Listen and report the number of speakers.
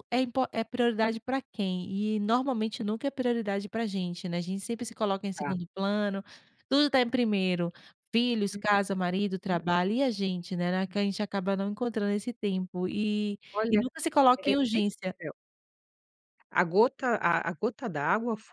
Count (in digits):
2